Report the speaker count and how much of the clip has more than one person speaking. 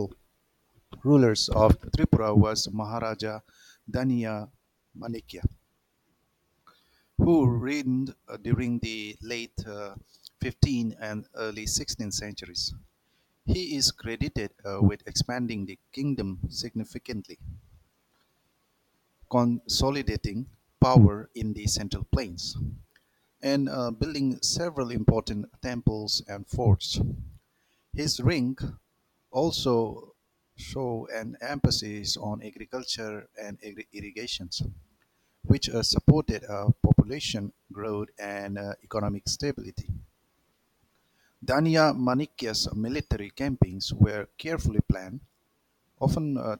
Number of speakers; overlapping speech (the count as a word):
one, no overlap